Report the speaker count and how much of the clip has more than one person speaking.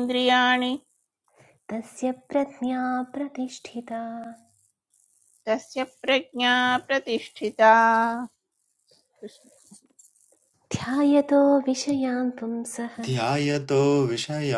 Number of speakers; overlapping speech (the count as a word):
three, no overlap